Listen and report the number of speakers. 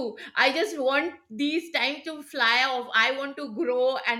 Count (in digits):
1